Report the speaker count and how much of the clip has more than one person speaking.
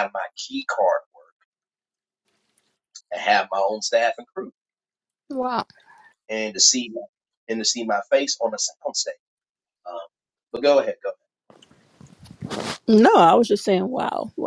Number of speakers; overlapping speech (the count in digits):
2, no overlap